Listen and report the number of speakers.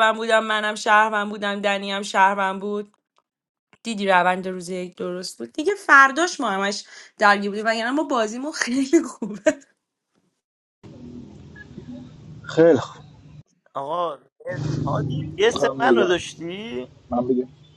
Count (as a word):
three